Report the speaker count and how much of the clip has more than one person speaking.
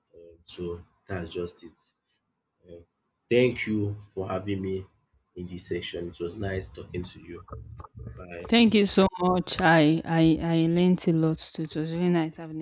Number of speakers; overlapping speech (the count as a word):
two, under 1%